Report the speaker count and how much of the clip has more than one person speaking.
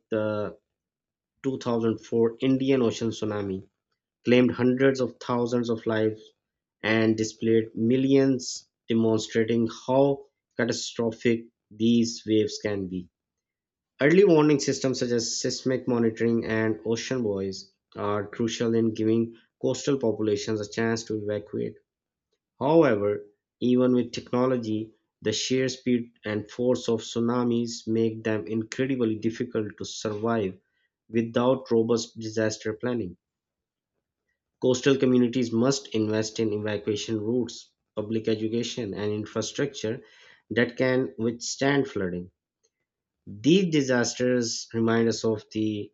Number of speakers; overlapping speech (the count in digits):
1, no overlap